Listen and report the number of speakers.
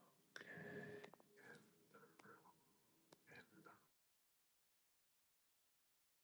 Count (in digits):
0